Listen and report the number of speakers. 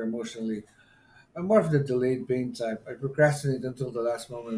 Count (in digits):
1